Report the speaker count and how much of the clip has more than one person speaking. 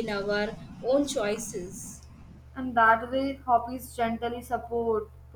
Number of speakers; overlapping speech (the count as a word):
two, no overlap